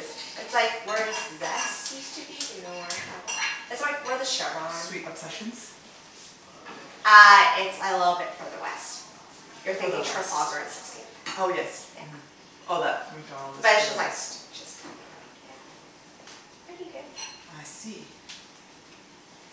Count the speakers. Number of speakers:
2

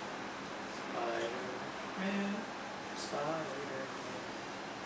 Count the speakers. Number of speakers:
1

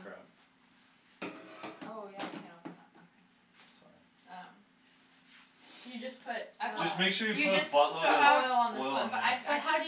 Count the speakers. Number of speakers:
3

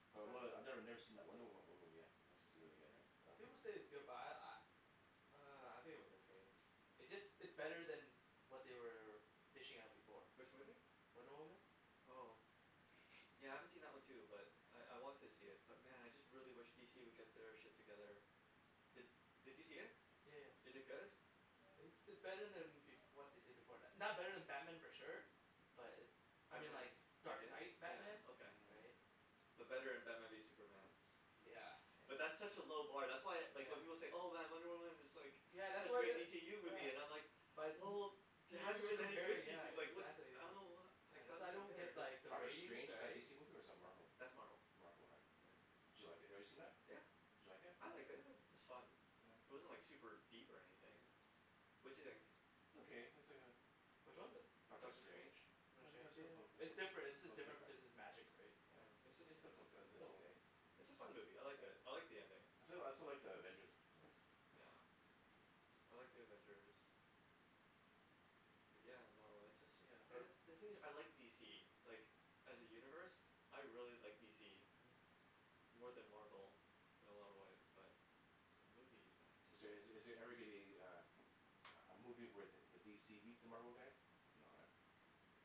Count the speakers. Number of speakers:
3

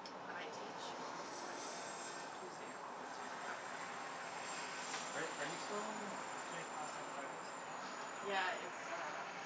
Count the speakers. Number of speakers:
2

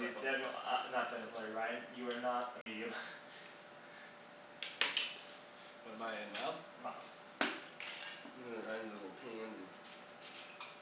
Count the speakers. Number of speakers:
3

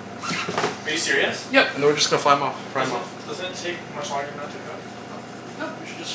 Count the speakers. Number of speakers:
2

